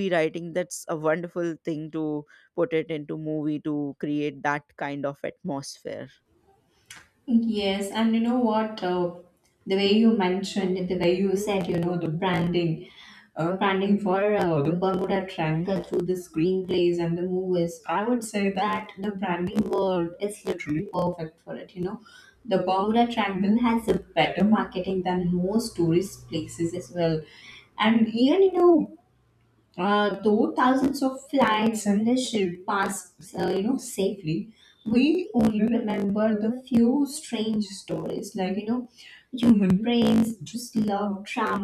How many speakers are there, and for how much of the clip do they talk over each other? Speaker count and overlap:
2, no overlap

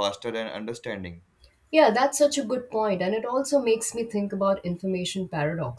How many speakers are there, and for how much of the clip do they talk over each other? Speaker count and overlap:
2, no overlap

